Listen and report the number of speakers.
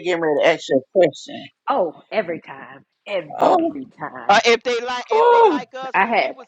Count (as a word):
three